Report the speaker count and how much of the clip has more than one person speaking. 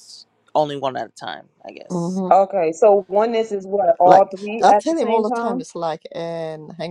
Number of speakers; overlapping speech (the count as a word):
three, about 18%